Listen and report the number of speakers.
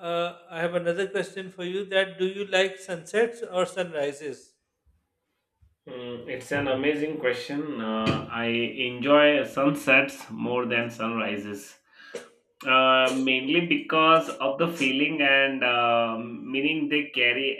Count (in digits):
2